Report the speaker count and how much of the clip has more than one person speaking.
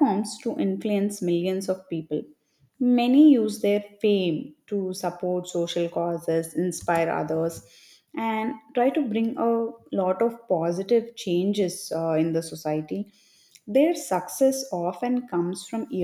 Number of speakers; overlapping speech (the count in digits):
1, no overlap